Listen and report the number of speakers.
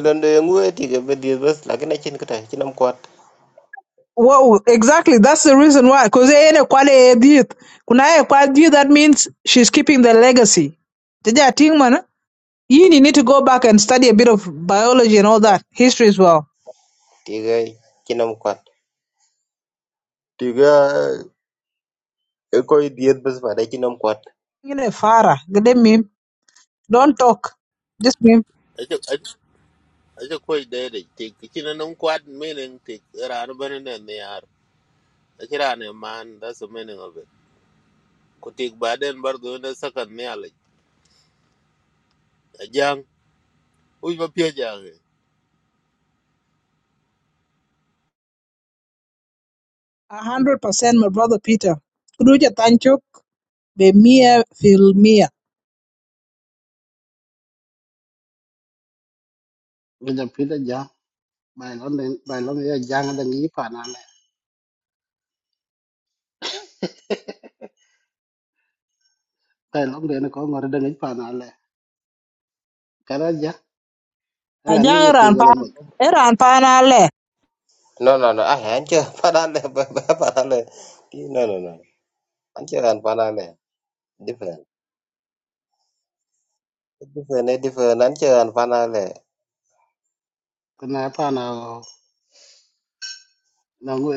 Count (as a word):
four